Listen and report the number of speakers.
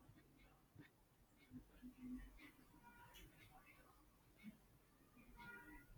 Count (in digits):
0